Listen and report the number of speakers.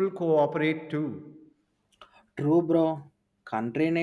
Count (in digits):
2